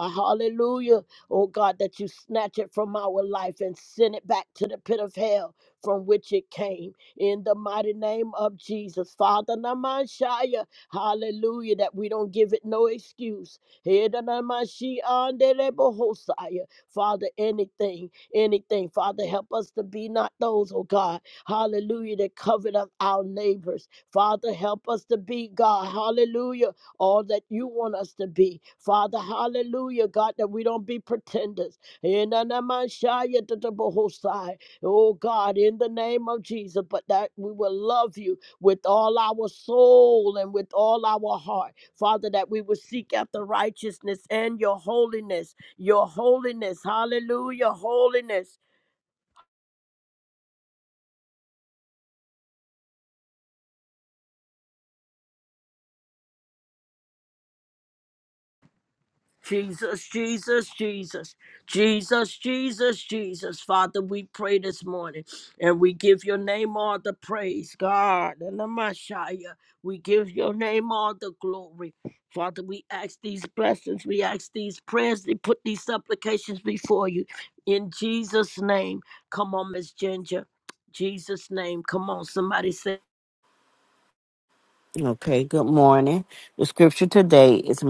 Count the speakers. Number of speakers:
two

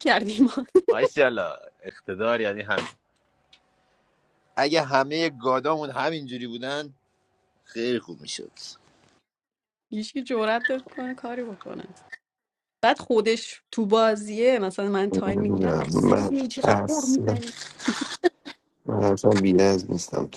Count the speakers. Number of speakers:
three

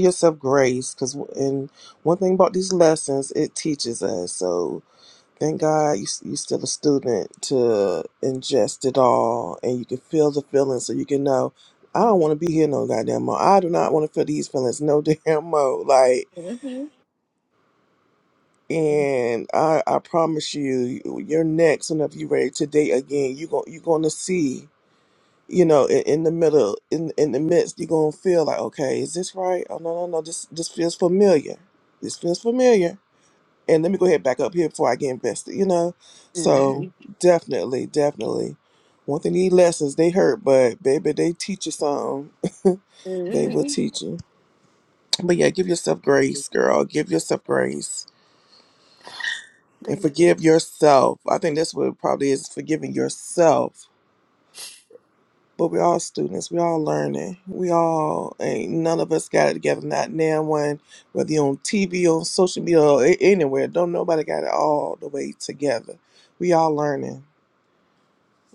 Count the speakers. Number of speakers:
two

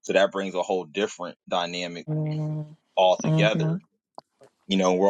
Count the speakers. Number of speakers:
two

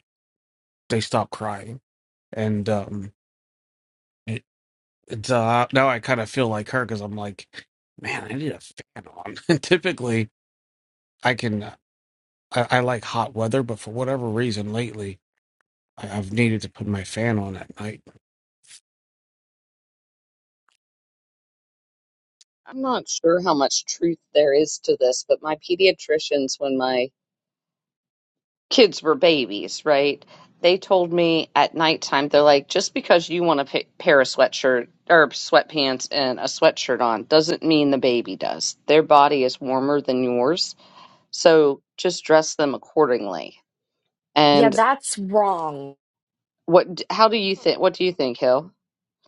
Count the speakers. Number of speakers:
three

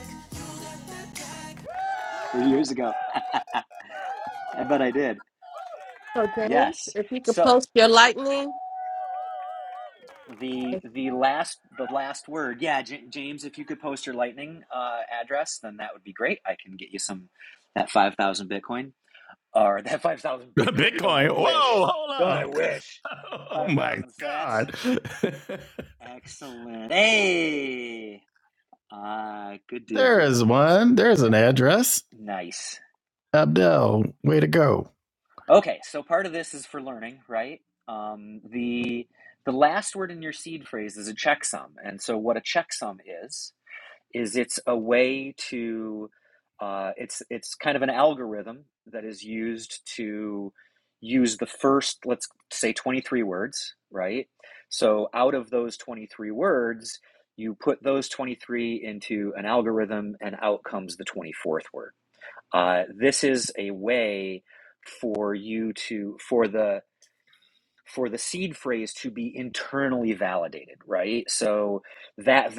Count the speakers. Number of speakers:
three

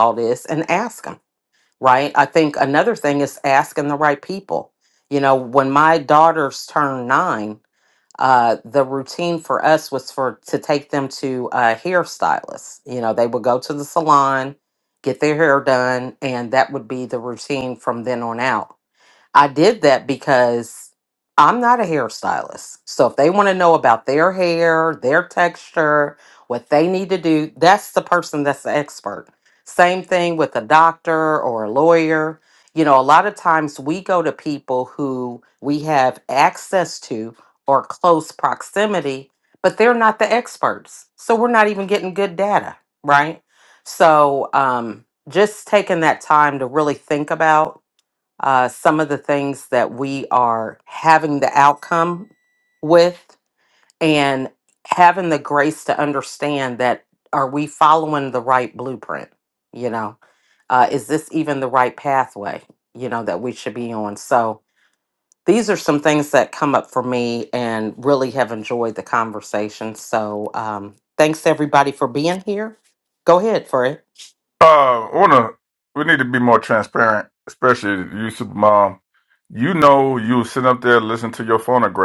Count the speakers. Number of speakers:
two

